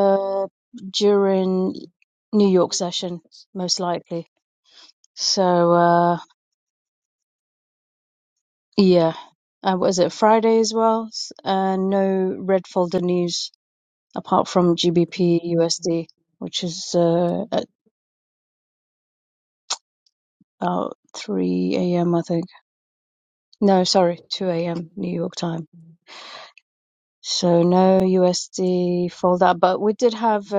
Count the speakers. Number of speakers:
one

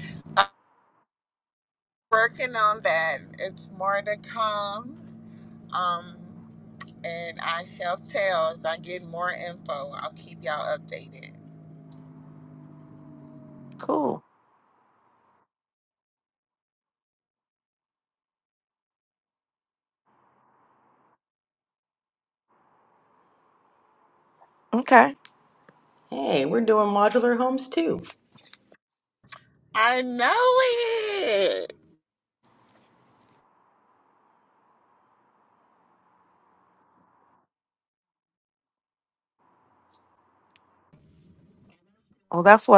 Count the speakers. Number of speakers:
three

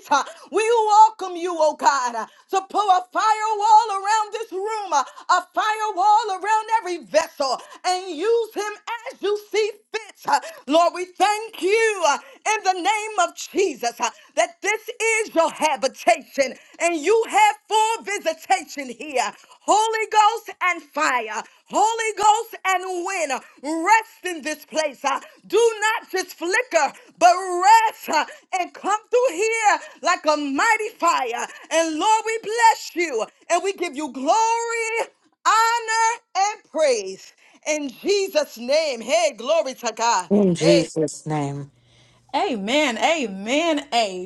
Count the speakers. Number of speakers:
three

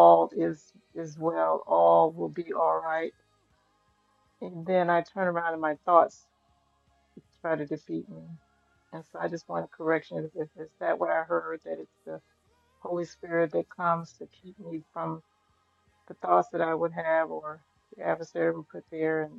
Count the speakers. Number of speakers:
one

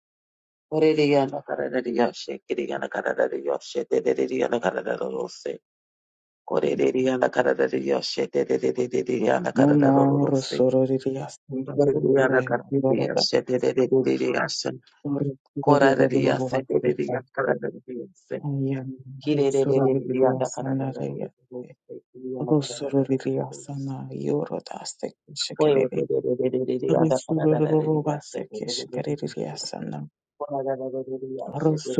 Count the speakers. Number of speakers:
two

